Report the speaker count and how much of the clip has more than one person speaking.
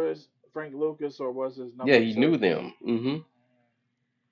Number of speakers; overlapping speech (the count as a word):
two, about 12%